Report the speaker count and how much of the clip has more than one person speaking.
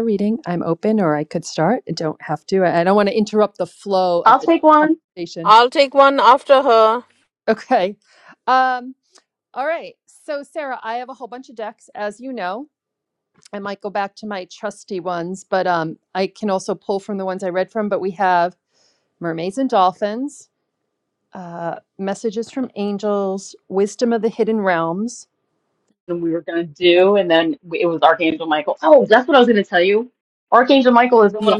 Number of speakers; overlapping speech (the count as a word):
three, about 2%